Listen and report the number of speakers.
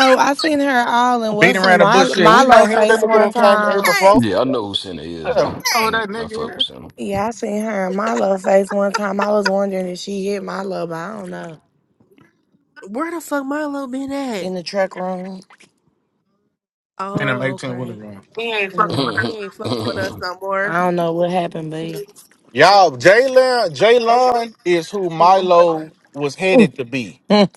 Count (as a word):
four